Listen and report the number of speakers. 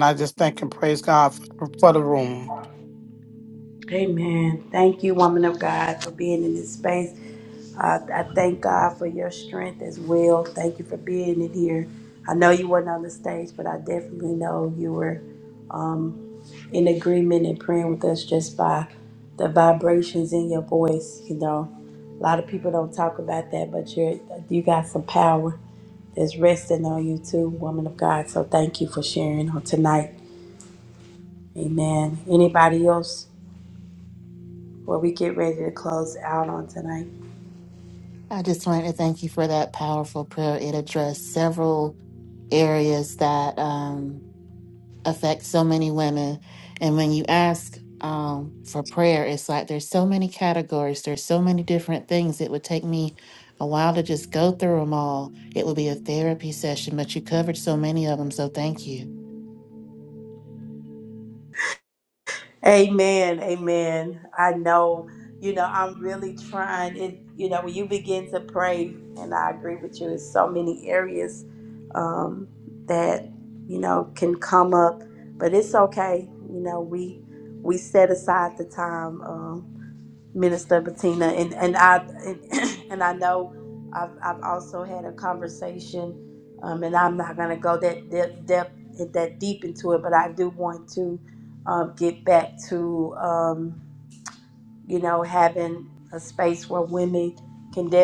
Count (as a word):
three